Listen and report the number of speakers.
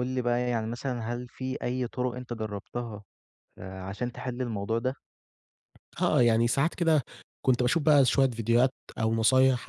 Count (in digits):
2